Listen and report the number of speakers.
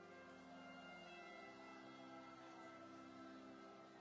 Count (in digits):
0